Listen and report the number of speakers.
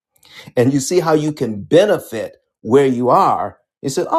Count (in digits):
1